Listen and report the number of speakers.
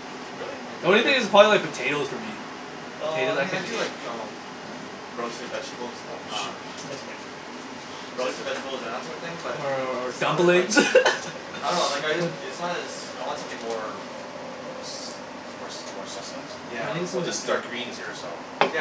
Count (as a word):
three